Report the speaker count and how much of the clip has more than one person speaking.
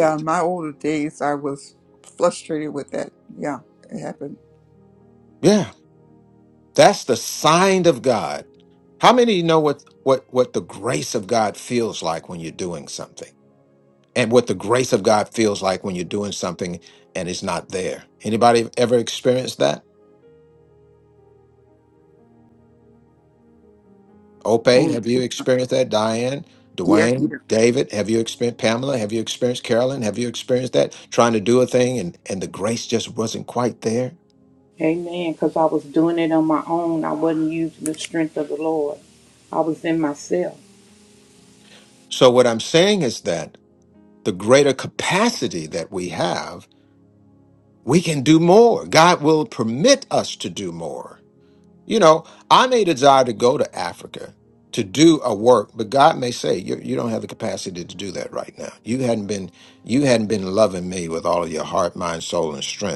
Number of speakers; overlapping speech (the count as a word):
three, about 1%